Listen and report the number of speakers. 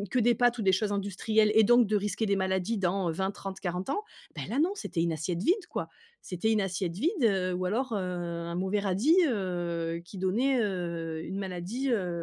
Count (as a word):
one